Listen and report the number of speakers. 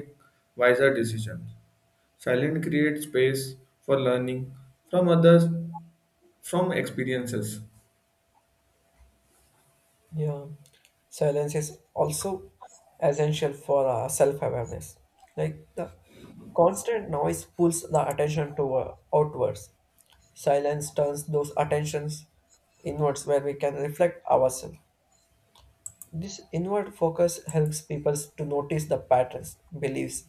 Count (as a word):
two